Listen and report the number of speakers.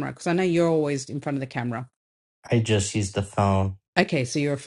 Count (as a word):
two